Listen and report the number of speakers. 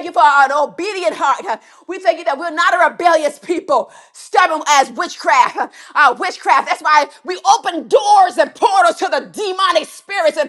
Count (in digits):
1